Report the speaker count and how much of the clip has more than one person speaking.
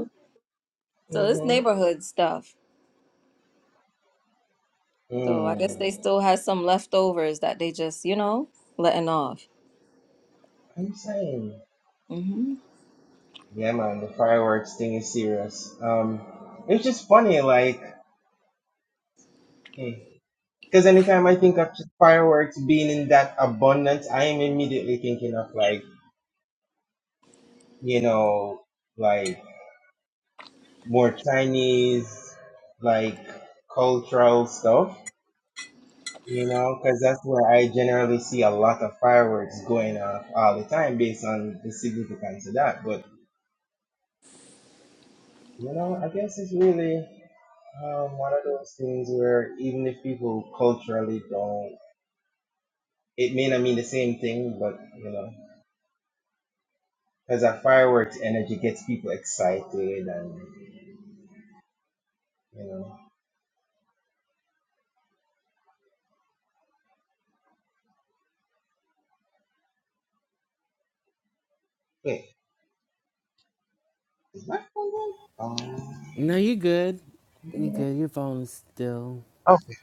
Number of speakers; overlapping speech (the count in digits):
3, about 1%